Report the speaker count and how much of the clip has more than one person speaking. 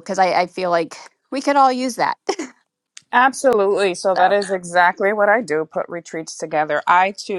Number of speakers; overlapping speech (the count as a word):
two, about 2%